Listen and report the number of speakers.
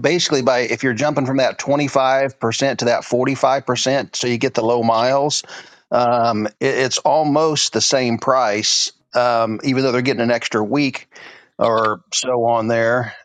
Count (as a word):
one